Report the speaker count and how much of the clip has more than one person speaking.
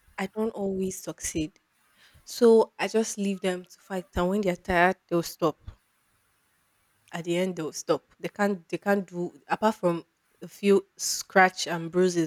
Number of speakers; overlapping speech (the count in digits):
1, no overlap